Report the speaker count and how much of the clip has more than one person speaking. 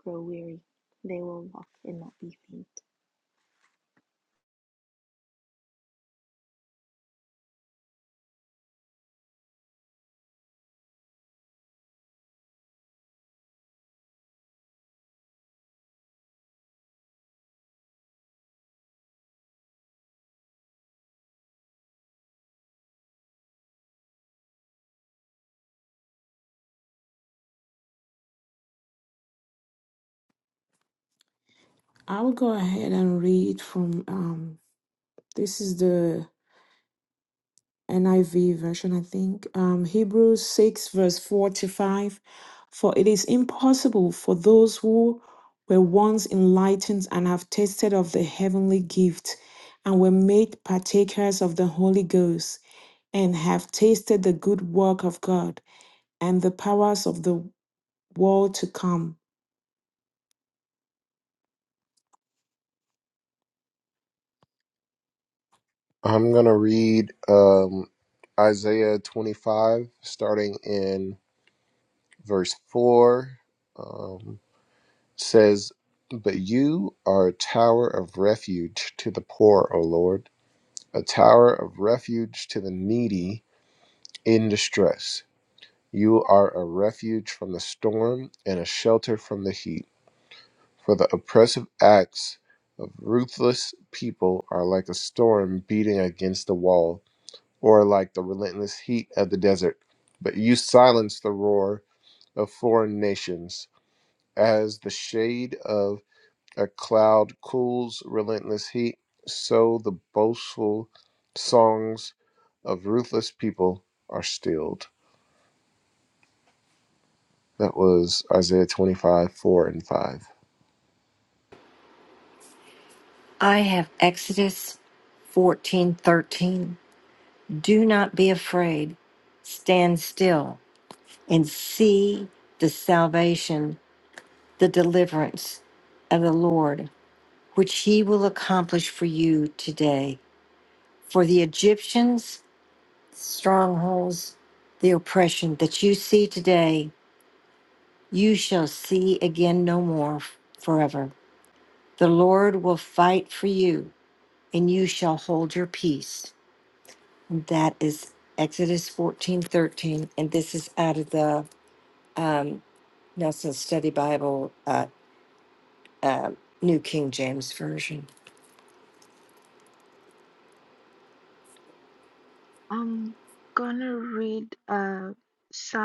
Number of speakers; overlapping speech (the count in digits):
5, no overlap